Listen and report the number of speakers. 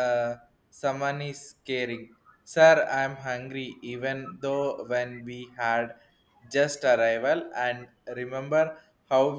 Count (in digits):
1